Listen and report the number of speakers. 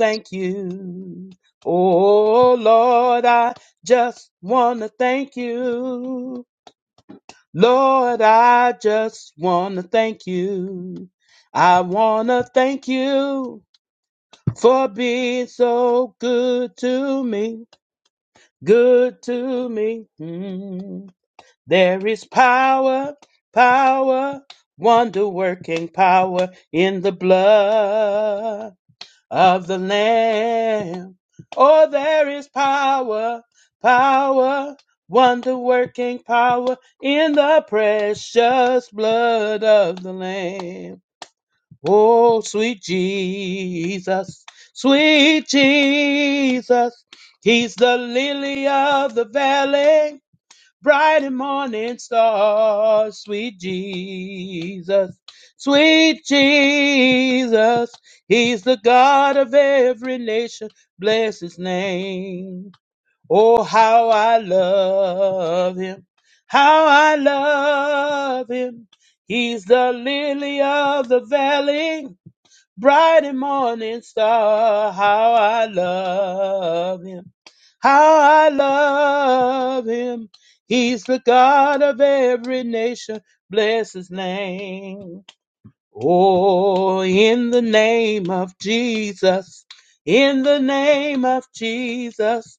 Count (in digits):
1